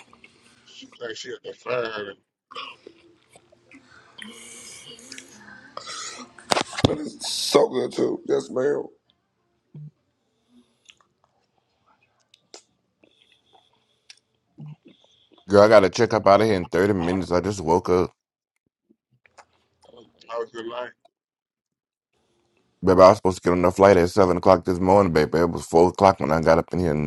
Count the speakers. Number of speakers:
3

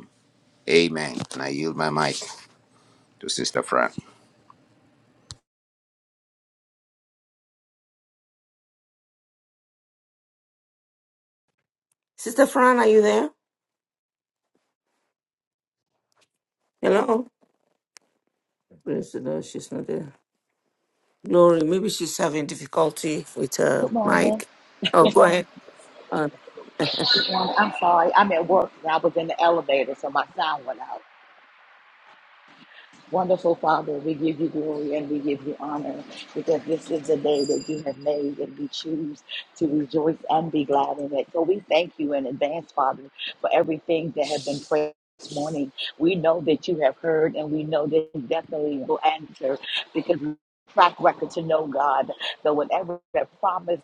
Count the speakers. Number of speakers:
3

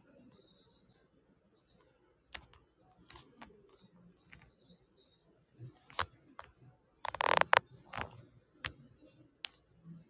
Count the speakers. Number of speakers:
0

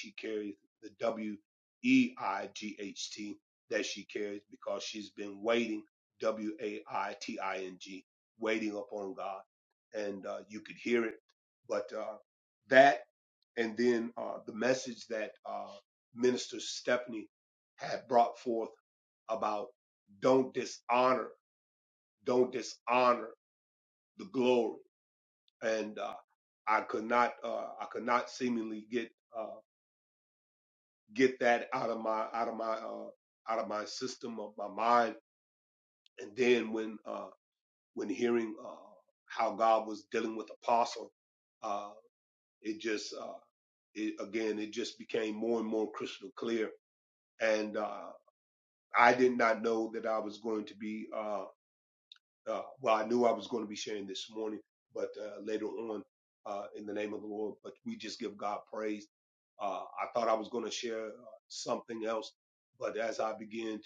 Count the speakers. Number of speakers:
1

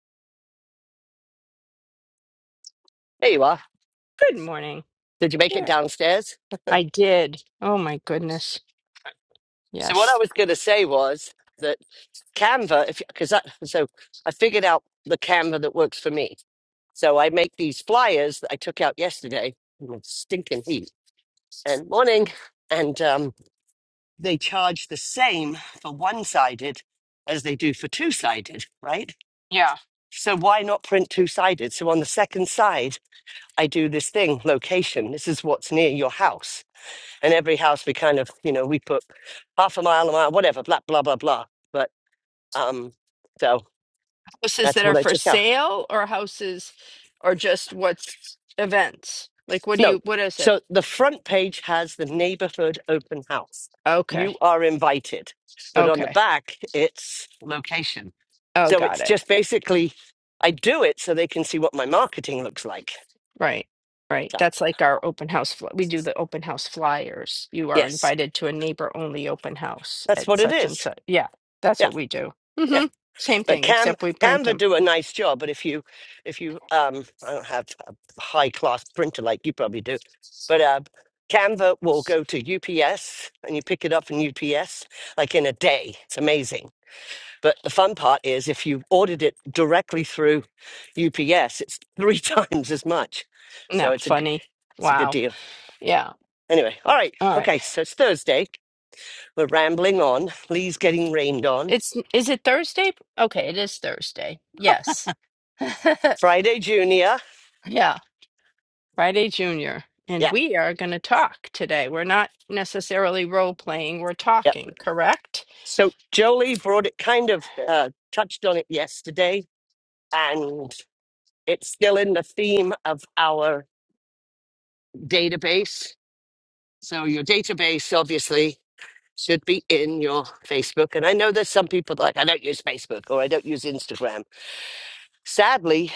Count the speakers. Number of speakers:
2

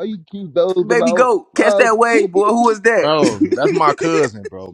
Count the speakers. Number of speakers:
3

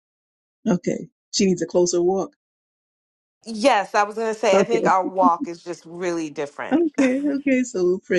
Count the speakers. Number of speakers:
2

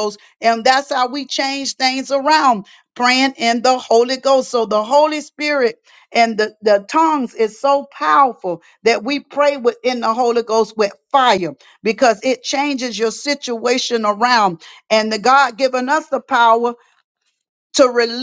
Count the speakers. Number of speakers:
1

